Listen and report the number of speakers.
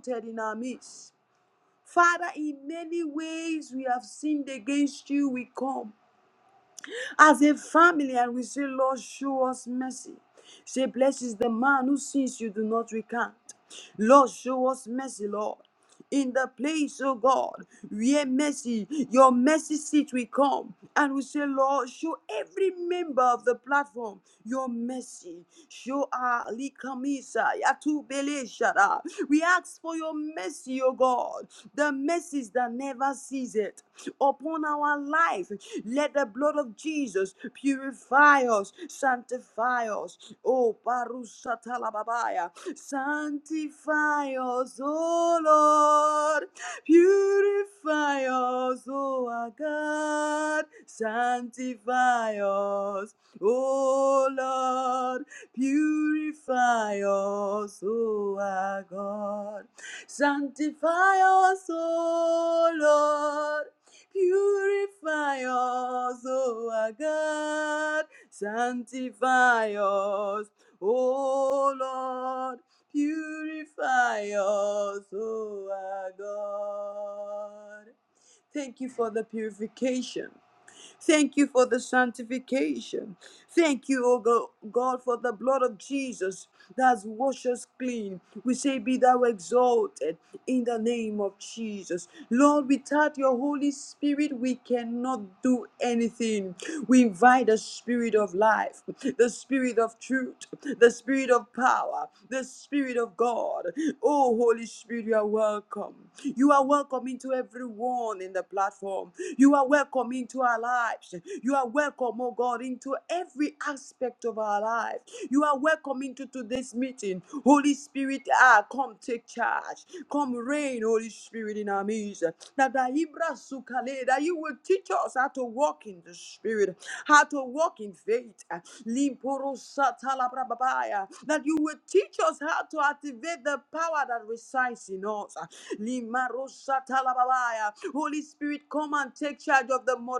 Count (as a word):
one